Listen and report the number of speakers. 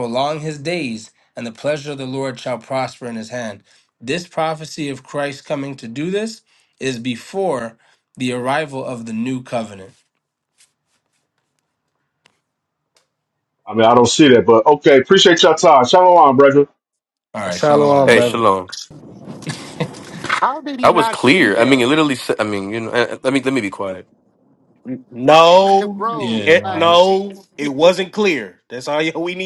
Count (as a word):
five